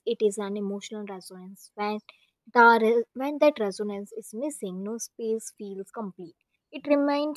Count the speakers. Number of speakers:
1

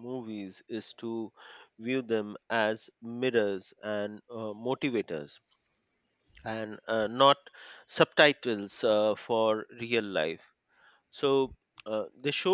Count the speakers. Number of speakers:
1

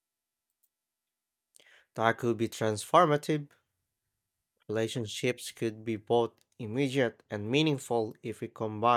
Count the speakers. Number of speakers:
1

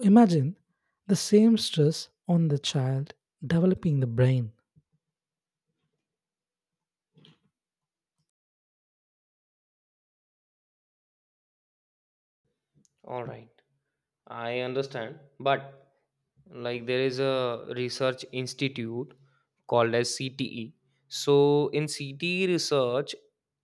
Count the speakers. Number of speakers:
2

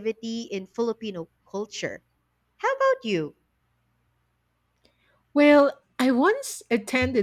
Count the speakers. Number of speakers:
2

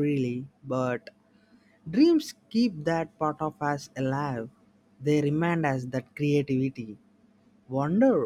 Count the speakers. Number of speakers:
1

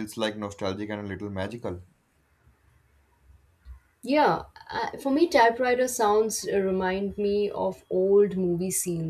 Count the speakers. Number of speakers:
2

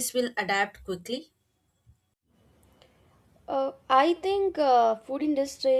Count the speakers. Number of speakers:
2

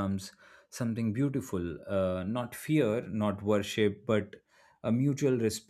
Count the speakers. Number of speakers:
1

